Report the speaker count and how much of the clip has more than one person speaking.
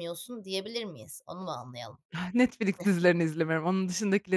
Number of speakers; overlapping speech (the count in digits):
2, no overlap